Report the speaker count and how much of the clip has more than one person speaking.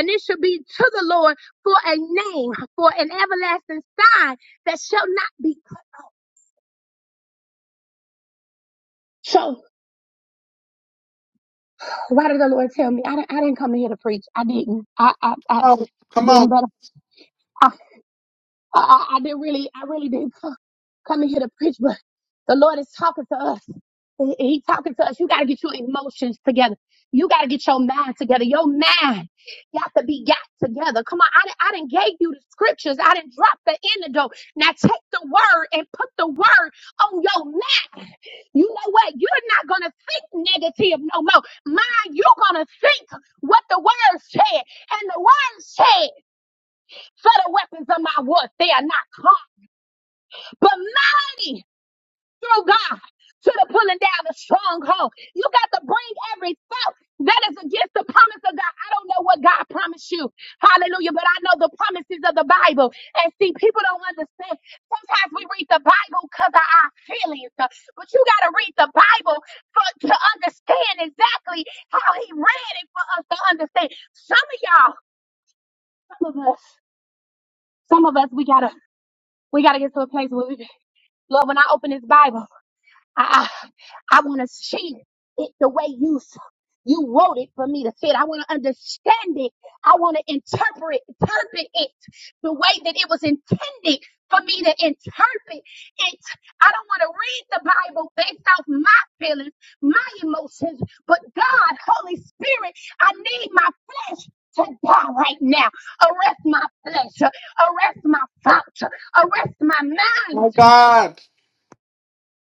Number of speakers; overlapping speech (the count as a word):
two, under 1%